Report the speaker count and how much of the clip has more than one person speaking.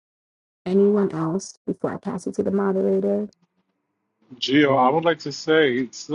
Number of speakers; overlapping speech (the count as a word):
two, no overlap